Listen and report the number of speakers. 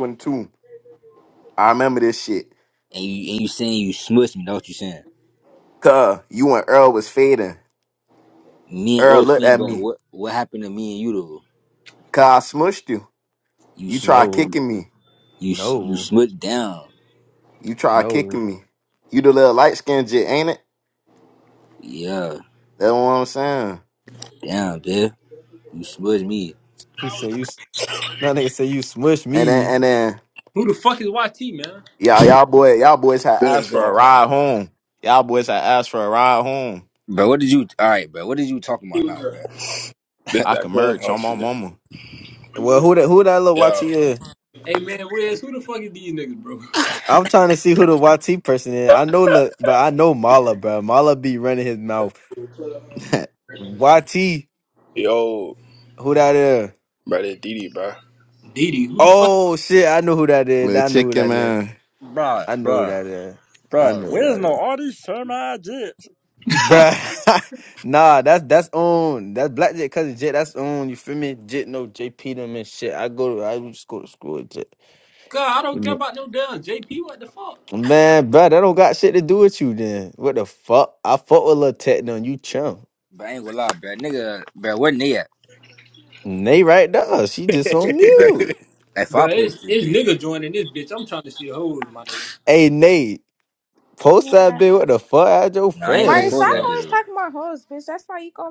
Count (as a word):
six